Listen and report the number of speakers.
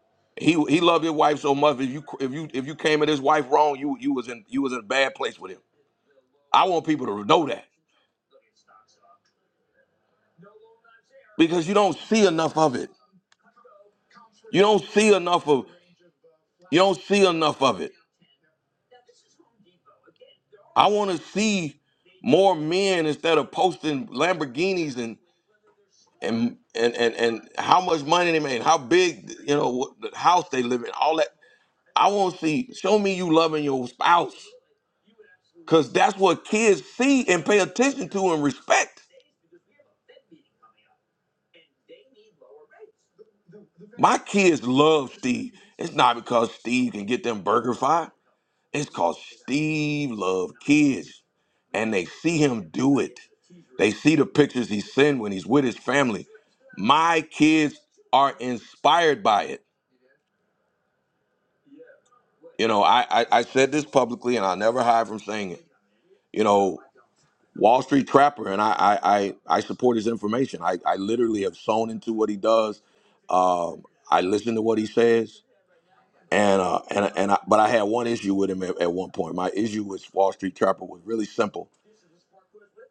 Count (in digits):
1